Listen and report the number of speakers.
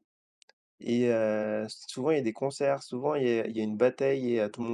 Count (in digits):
1